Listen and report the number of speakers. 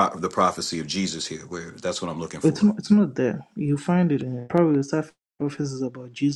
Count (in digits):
2